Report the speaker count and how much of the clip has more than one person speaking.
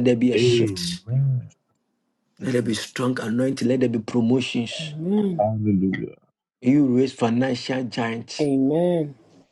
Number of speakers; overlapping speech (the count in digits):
3, about 10%